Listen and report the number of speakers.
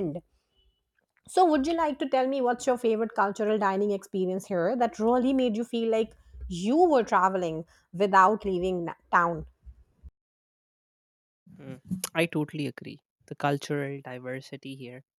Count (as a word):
two